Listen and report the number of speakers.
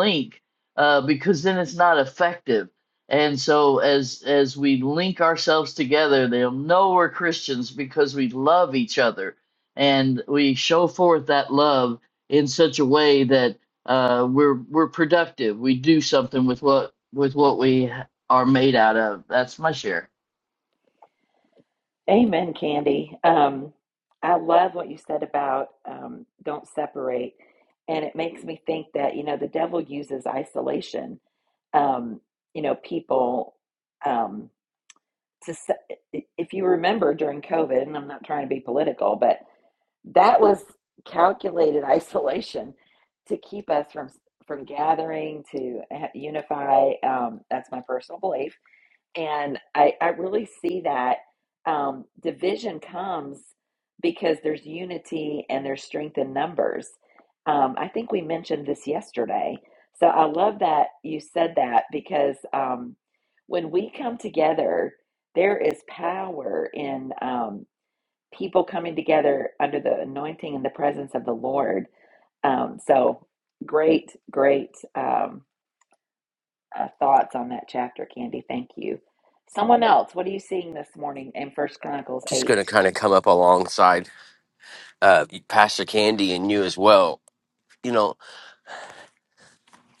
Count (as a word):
three